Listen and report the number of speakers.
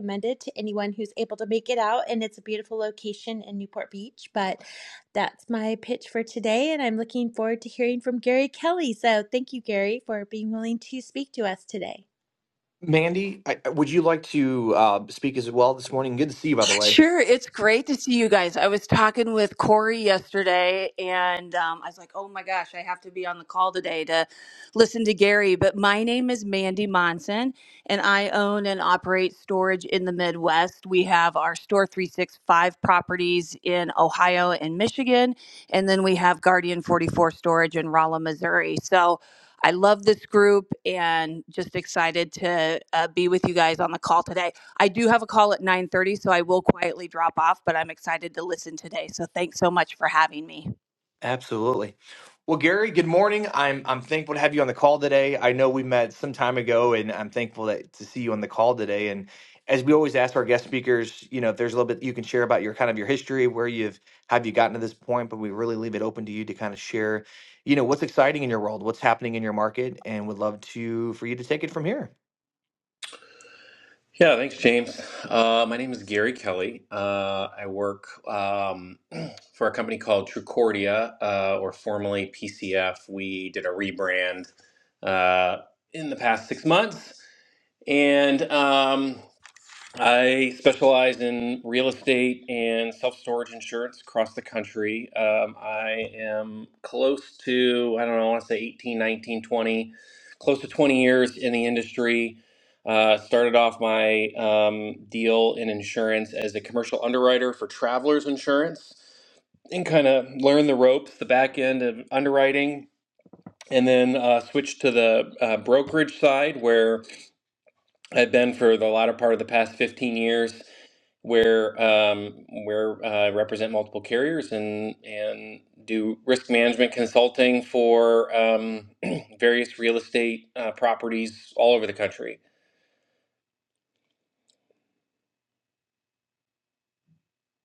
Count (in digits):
4